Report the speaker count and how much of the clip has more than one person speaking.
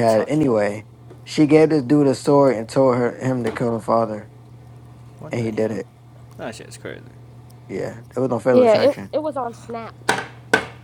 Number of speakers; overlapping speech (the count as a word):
three, about 12%